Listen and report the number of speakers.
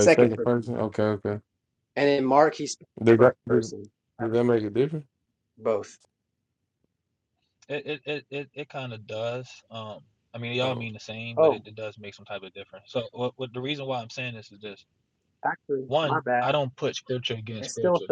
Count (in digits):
3